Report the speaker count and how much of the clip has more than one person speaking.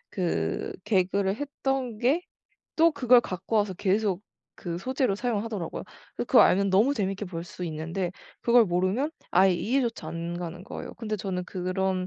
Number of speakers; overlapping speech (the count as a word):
one, no overlap